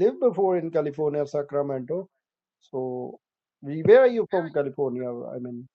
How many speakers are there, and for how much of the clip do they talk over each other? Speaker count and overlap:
1, no overlap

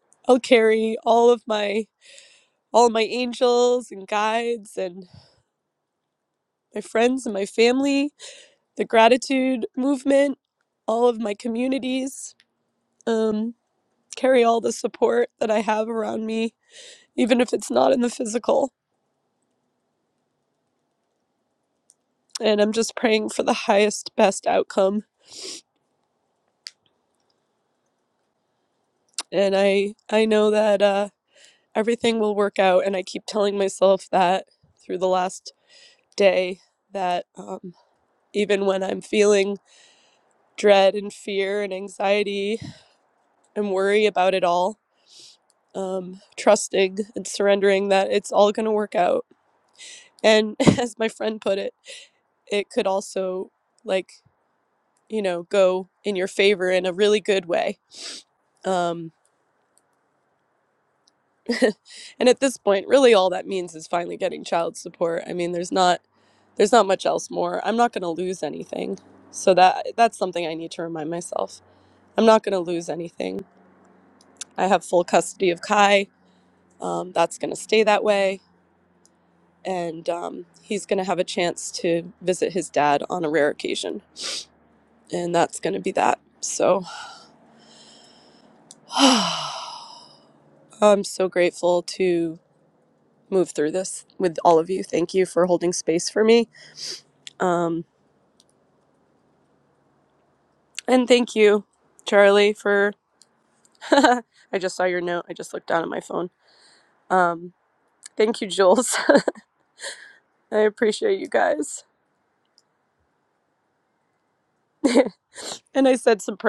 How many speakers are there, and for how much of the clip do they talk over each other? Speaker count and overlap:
1, no overlap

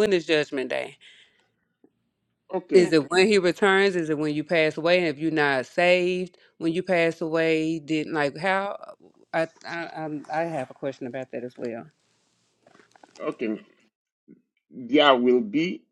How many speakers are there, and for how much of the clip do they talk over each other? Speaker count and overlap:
2, about 1%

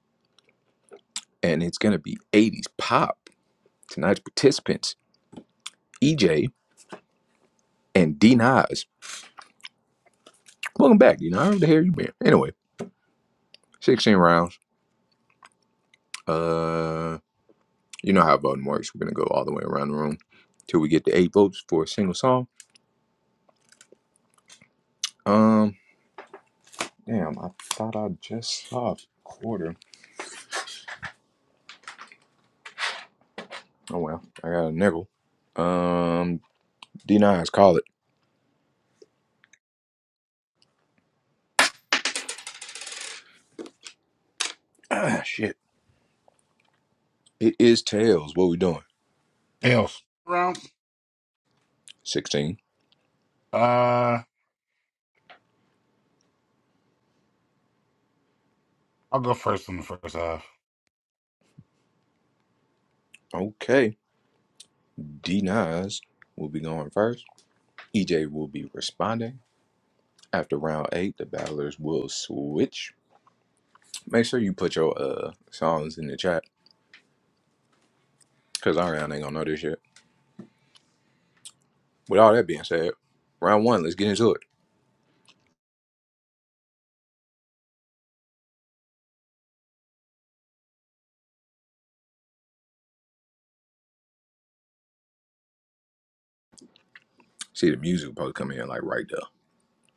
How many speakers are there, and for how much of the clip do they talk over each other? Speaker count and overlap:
2, no overlap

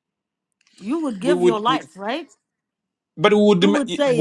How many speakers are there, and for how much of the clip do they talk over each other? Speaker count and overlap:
2, about 29%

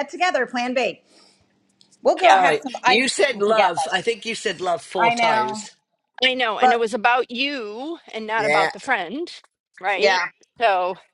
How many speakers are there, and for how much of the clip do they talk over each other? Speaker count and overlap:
3, about 27%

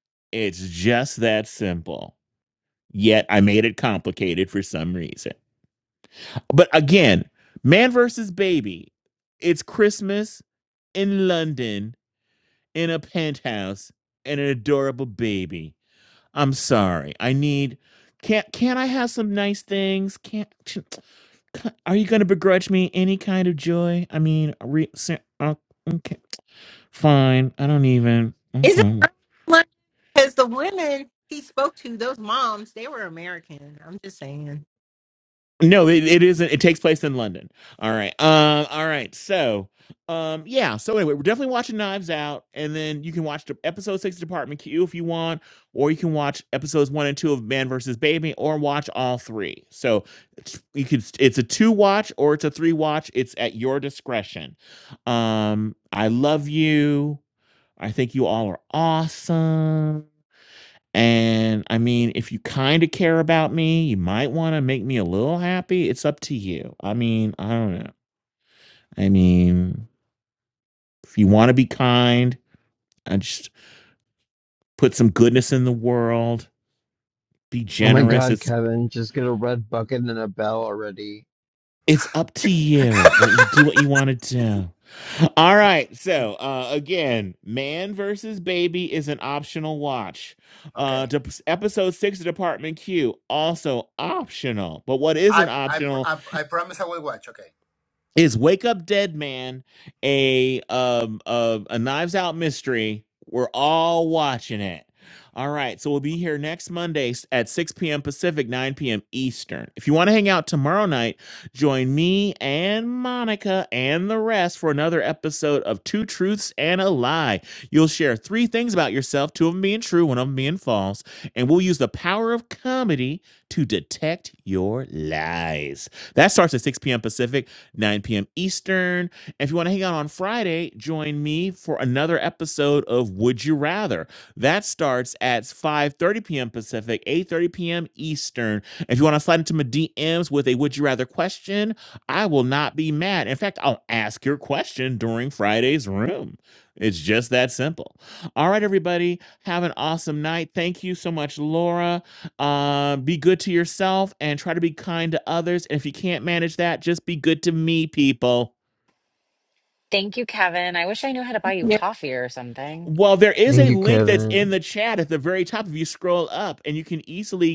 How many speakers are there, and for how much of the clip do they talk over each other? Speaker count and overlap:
5, about 2%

